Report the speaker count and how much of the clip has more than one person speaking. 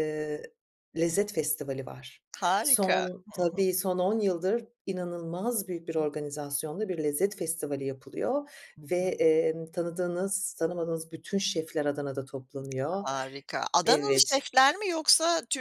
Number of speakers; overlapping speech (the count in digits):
2, about 10%